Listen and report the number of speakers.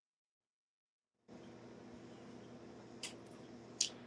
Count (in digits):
0